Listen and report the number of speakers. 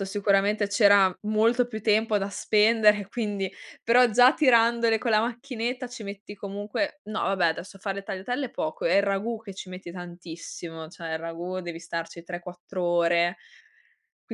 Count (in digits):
1